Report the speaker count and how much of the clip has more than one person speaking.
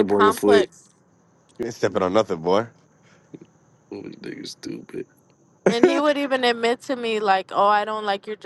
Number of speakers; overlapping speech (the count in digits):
3, about 11%